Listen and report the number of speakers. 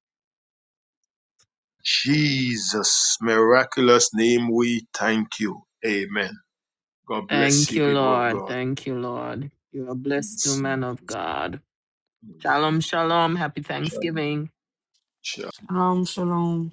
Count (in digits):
3